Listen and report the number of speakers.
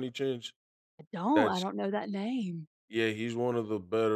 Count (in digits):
2